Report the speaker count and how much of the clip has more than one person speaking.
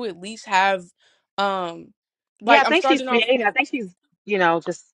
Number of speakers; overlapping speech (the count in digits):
2, about 15%